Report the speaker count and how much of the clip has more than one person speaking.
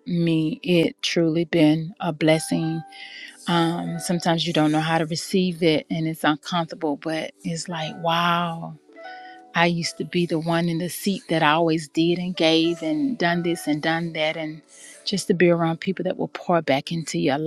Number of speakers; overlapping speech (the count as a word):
one, no overlap